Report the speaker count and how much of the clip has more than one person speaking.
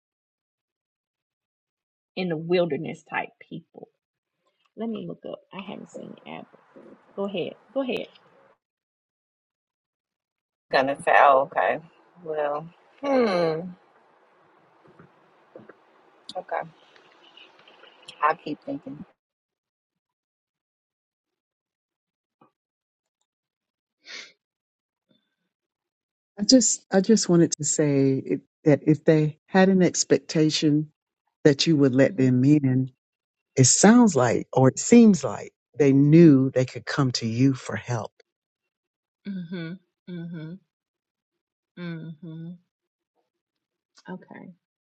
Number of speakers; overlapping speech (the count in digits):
3, no overlap